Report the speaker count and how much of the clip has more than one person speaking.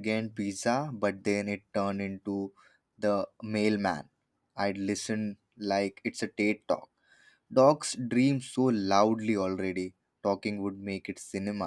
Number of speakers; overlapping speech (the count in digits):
1, no overlap